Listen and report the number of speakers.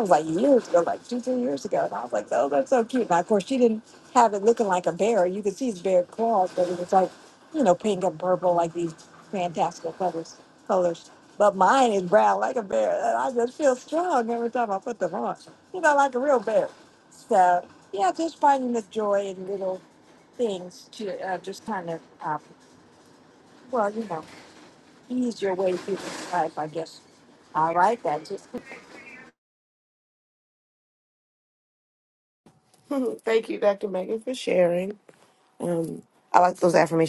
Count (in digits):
2